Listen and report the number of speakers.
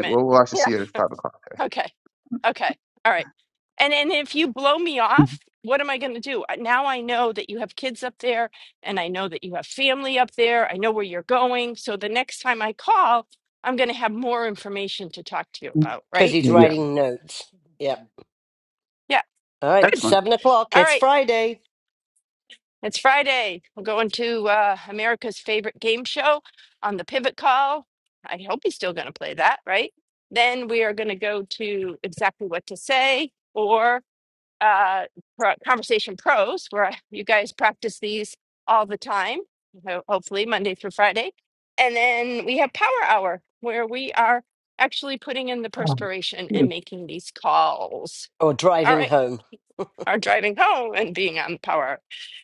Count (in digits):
3